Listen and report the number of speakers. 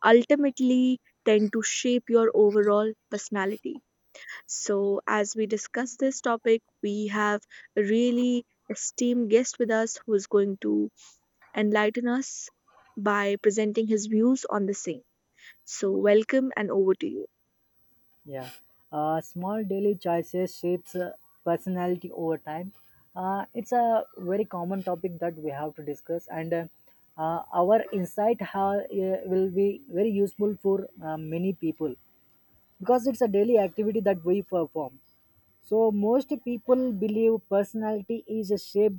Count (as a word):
two